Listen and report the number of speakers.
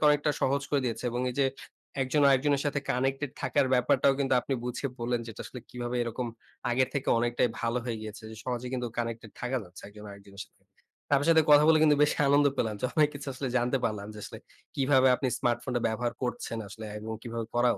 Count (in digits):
1